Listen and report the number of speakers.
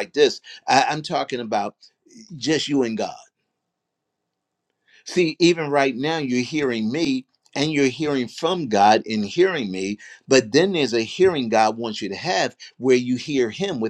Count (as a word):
one